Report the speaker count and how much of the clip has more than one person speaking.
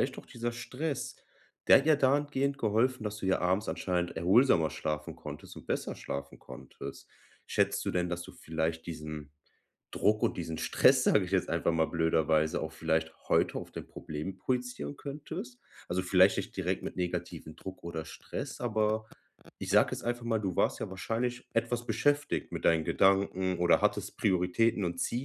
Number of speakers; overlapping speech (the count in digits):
1, no overlap